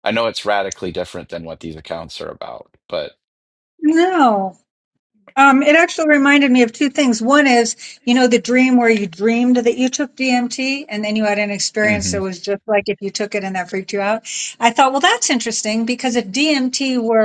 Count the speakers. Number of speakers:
2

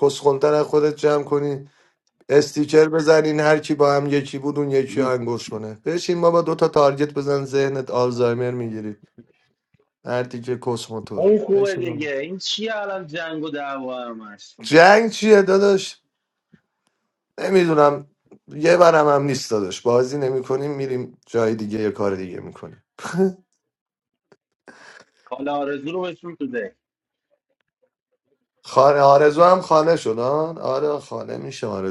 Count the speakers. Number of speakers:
2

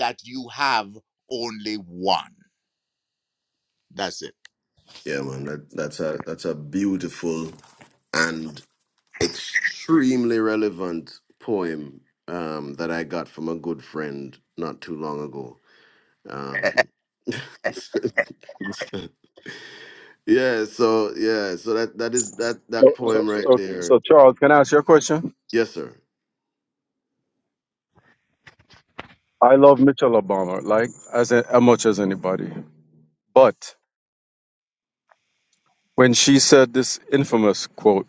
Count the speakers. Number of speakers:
3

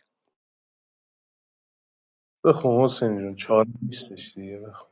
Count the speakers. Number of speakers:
1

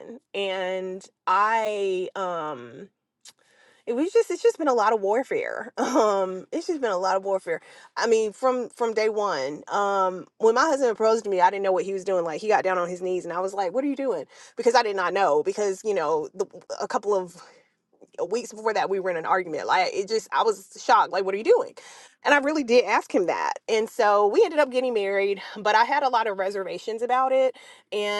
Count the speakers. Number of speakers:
1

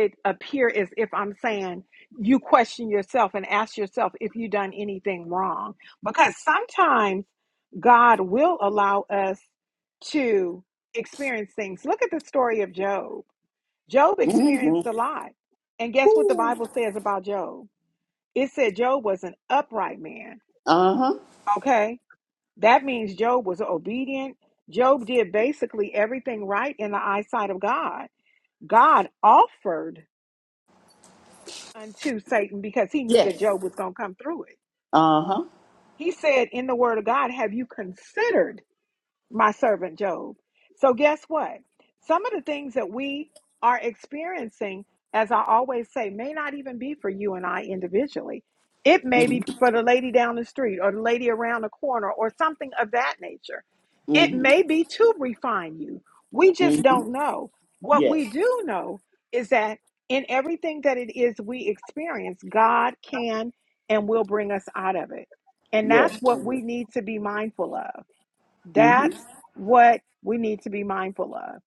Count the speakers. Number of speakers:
2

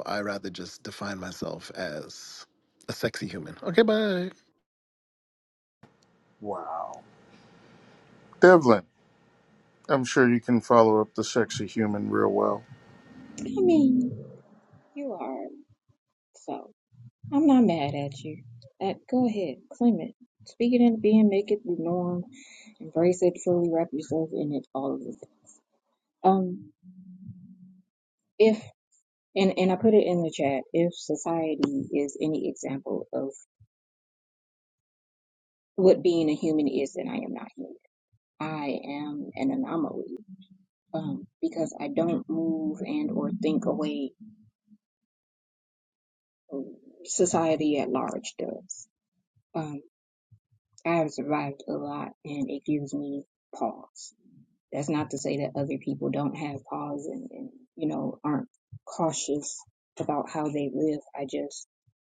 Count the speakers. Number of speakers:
3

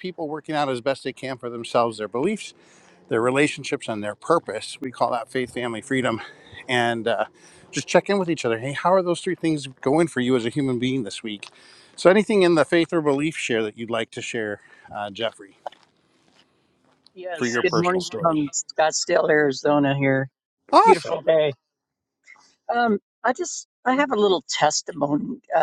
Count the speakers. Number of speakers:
2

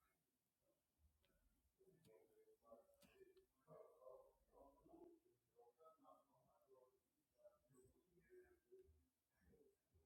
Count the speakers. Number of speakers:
0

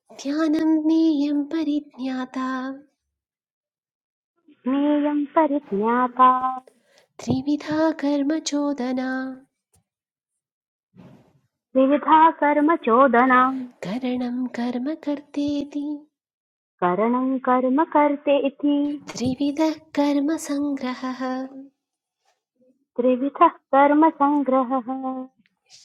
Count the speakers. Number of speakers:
2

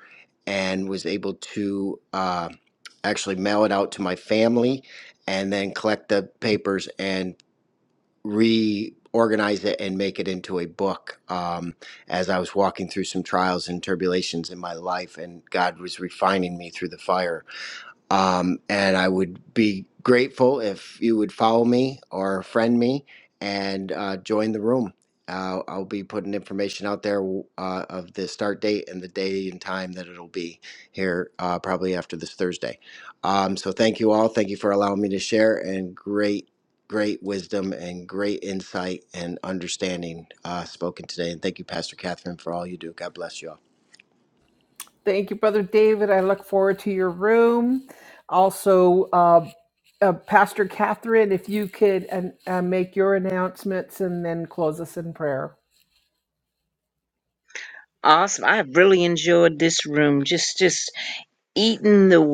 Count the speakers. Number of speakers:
3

